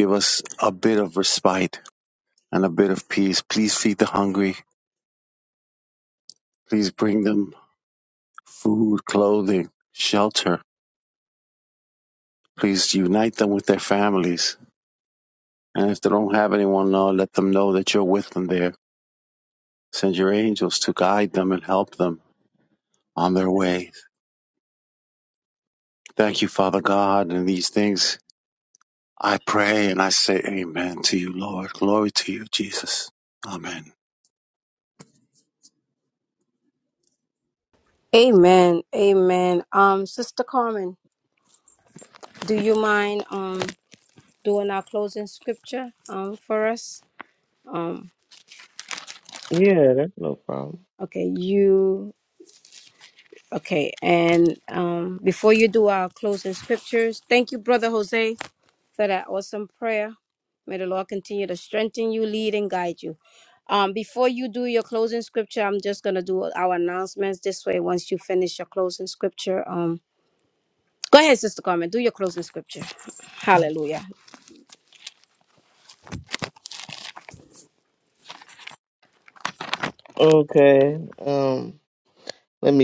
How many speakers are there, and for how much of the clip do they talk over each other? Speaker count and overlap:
three, no overlap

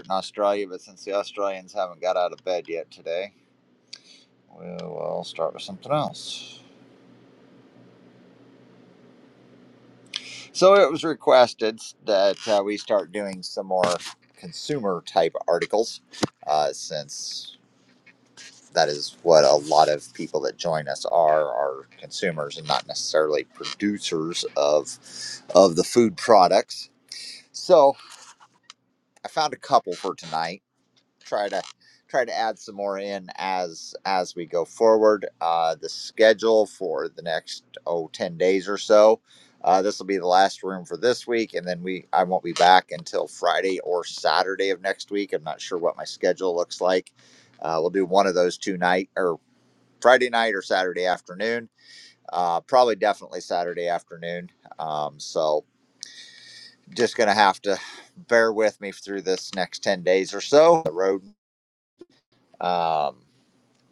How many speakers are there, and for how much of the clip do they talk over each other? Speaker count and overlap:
one, no overlap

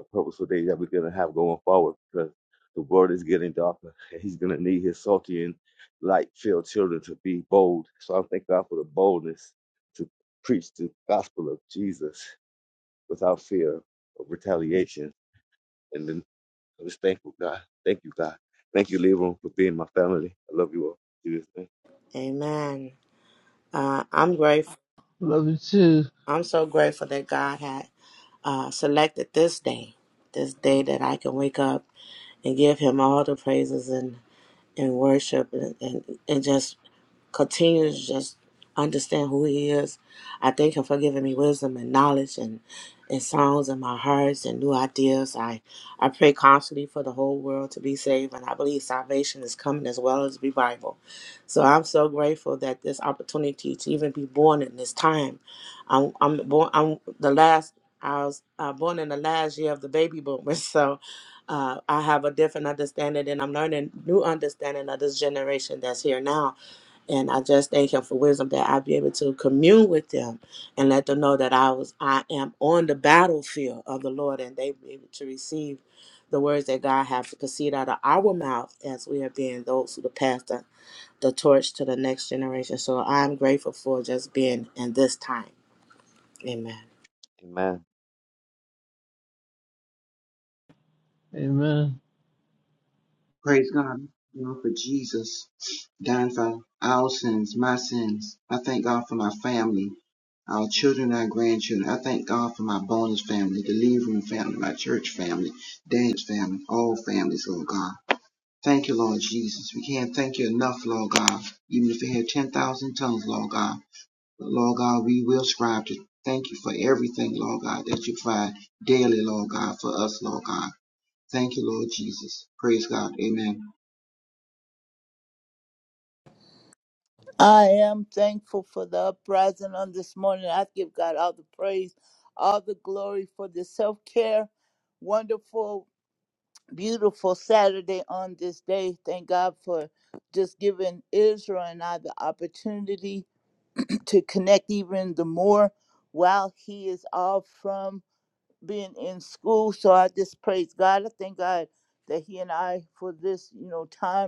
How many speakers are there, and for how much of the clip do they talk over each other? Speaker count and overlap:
five, no overlap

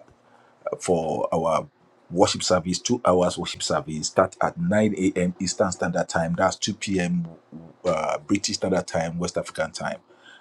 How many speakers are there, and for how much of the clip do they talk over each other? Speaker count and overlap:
one, no overlap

